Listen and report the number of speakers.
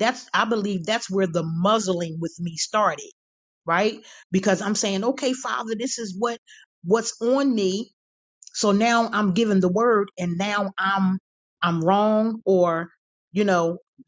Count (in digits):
1